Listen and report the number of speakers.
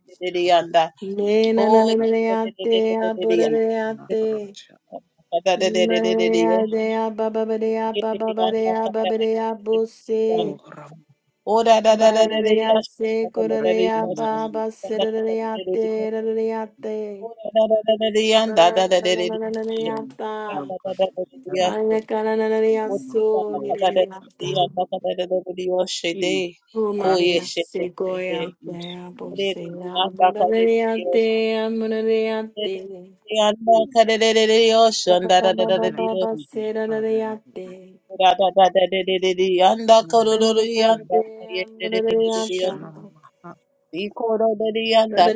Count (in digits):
3